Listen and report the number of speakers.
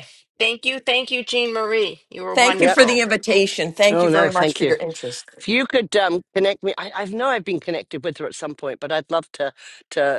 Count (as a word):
three